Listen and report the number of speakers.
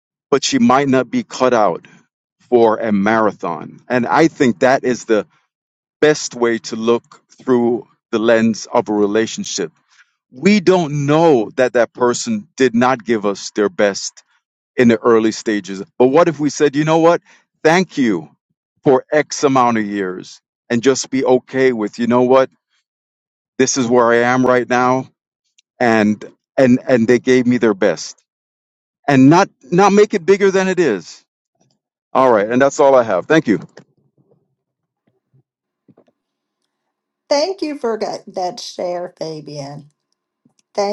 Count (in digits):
2